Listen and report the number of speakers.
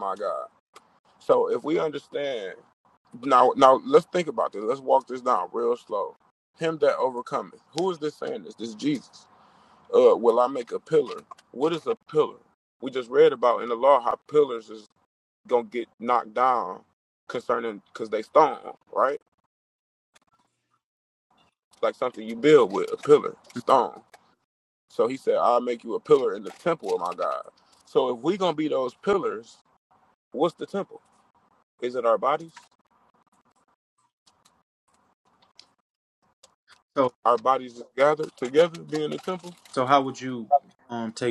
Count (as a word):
two